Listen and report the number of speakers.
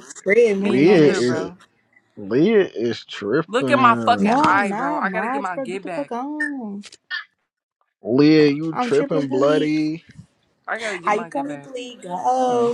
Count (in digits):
3